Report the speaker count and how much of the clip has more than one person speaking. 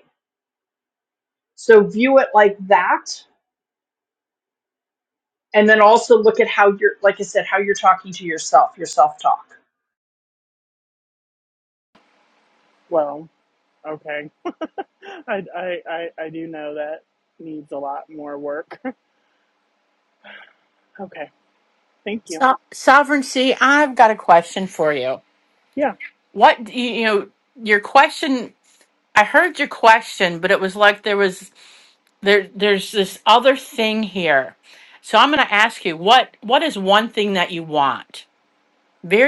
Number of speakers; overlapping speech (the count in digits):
3, under 1%